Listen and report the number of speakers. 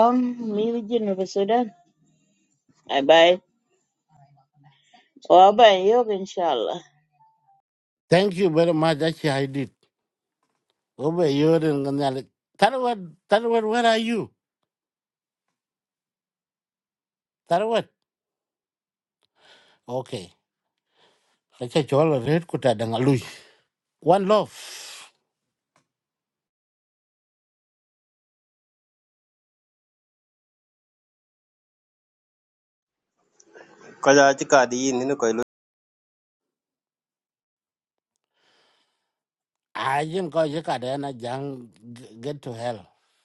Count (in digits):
3